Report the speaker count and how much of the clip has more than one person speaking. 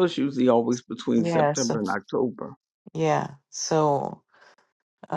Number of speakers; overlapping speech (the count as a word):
two, about 7%